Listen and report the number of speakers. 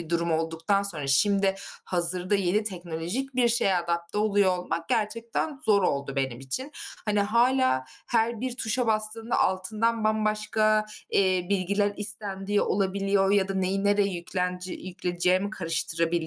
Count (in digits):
1